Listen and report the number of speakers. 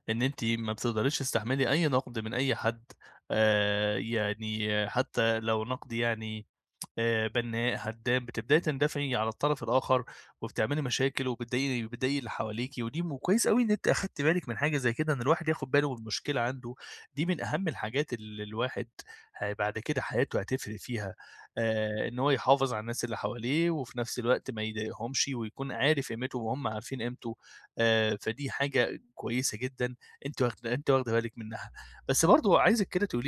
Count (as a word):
one